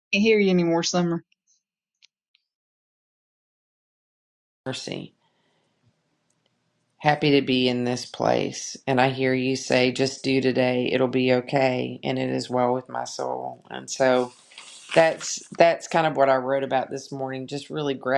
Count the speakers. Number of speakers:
2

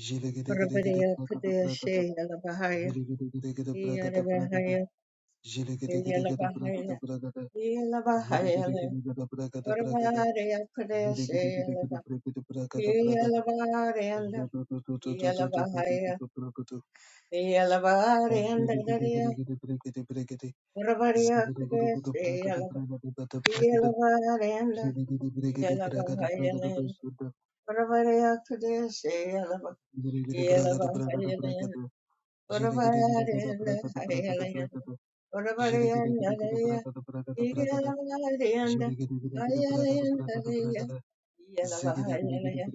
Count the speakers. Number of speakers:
2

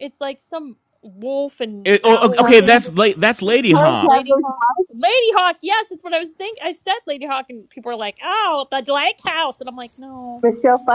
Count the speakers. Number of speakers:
3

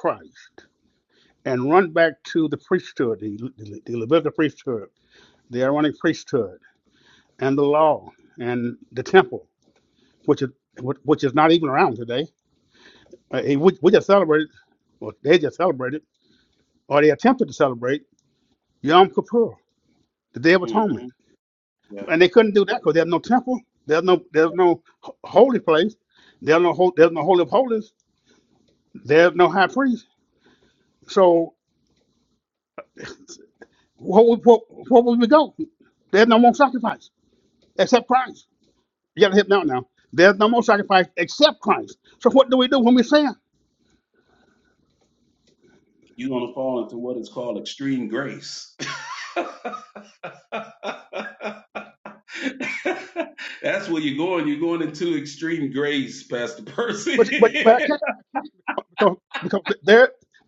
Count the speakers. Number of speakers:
2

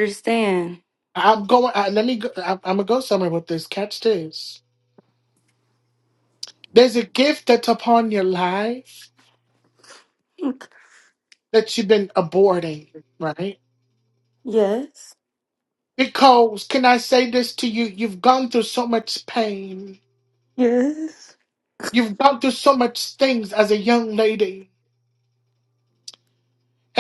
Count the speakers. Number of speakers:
2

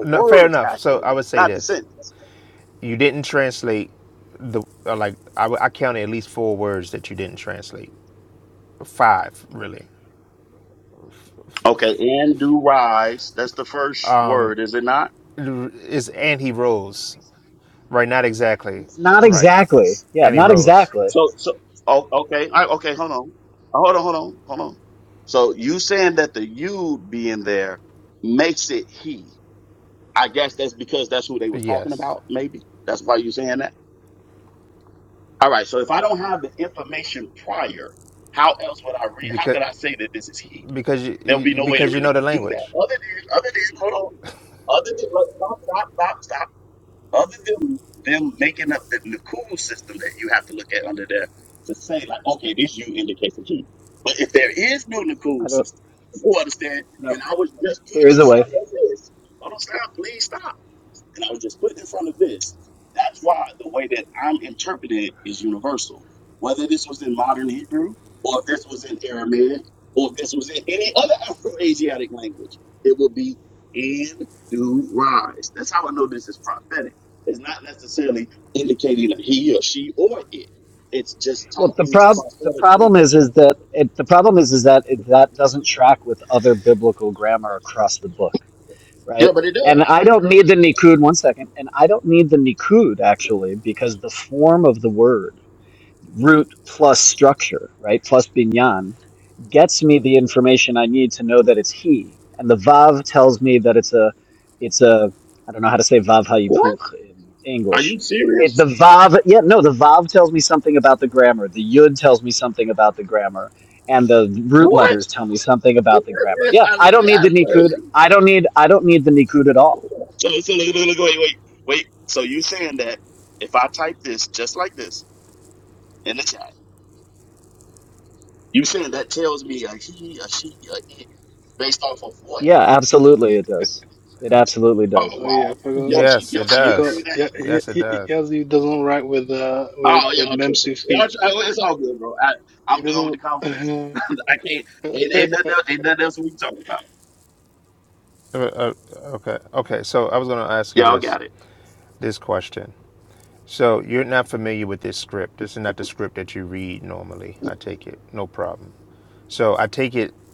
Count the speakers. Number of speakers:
4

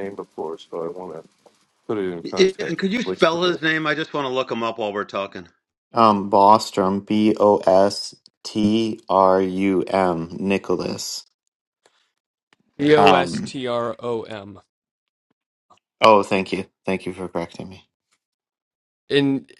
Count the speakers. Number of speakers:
4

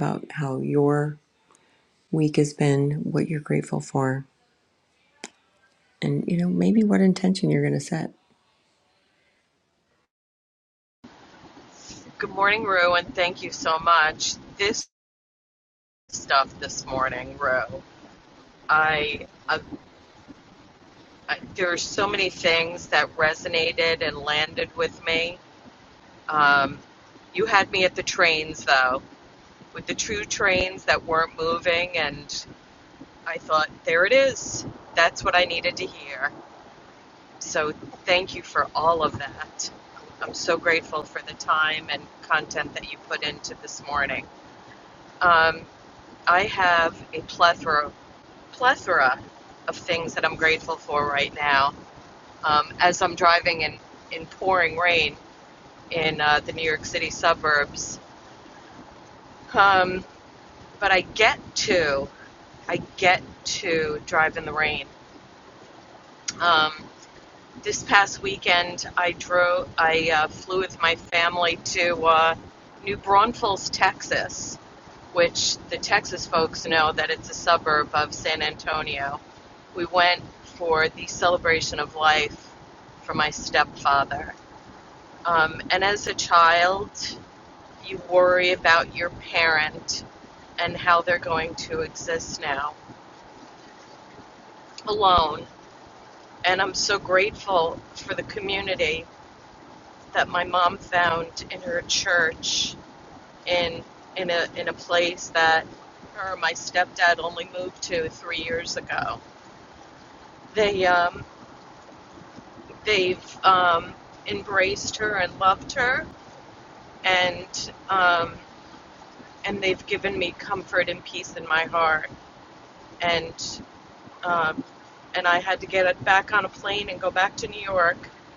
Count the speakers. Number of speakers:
2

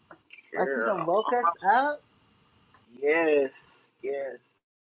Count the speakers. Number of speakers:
2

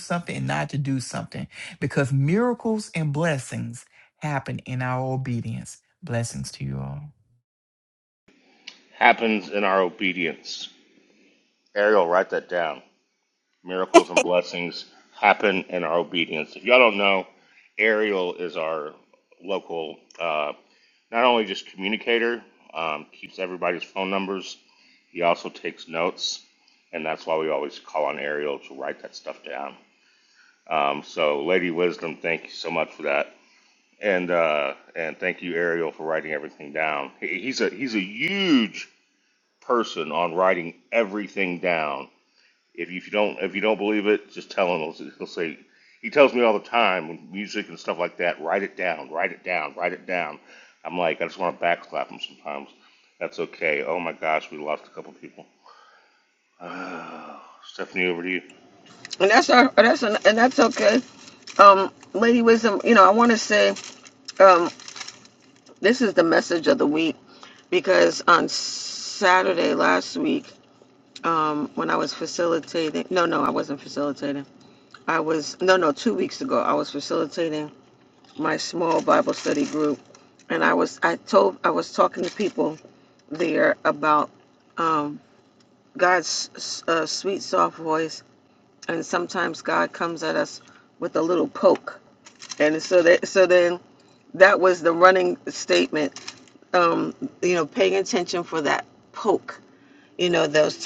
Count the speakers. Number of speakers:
3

